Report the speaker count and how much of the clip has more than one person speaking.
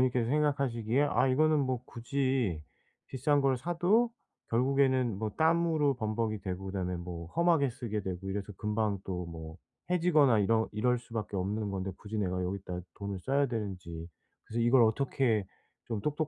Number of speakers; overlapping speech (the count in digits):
1, no overlap